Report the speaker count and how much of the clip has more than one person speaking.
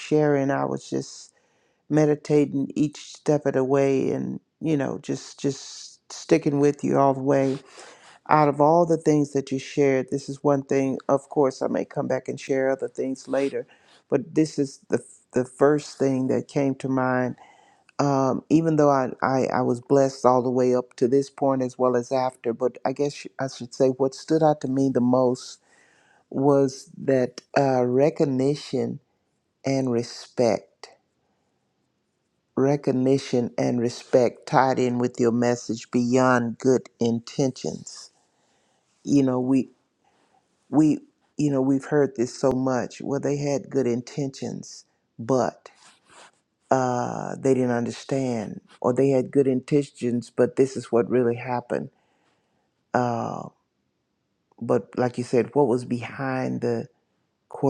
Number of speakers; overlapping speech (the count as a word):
one, no overlap